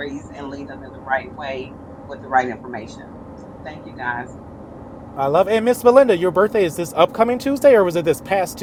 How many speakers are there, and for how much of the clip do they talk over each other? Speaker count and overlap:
2, no overlap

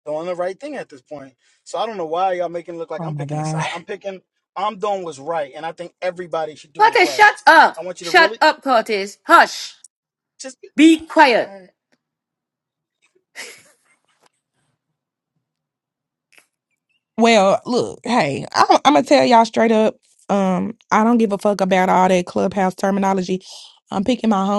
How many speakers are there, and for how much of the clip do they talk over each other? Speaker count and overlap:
3, about 8%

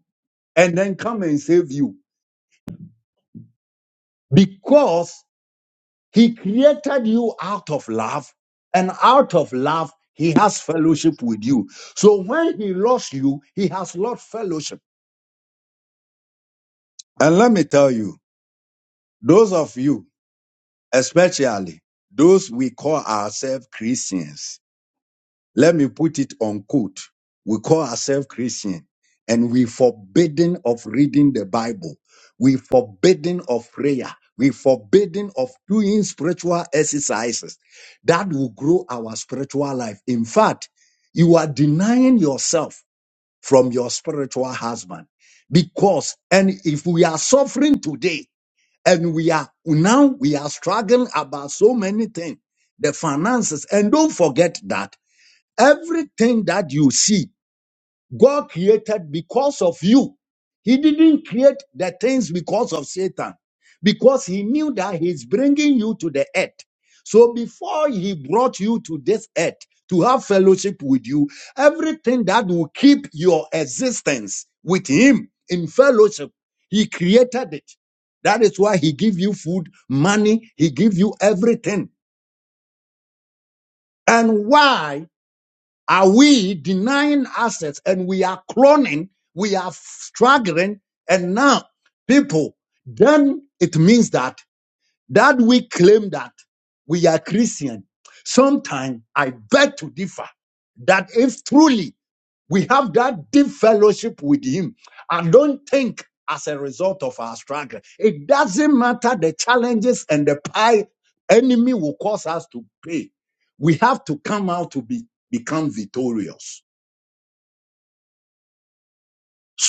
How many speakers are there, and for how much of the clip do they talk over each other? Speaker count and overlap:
1, no overlap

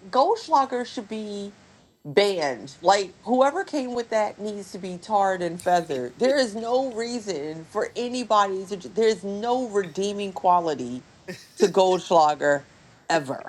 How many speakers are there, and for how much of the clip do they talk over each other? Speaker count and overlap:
1, no overlap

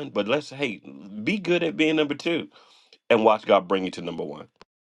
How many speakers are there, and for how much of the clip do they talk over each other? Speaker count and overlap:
1, no overlap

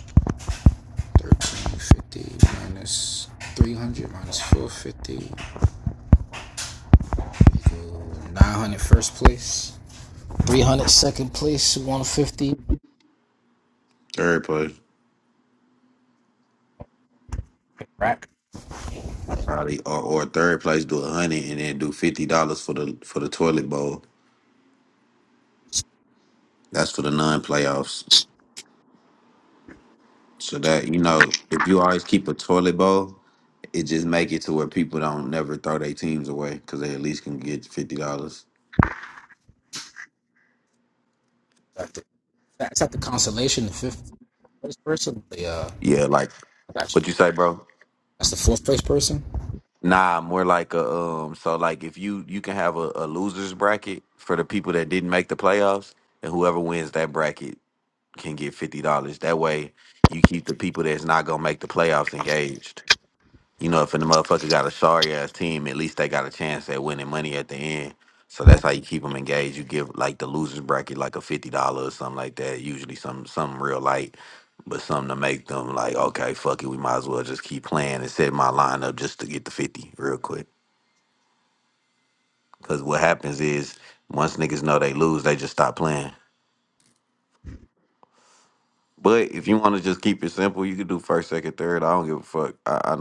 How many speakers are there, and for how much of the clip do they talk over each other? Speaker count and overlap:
2, under 1%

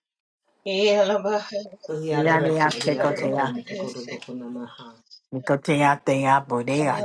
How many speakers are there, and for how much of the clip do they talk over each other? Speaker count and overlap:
3, about 33%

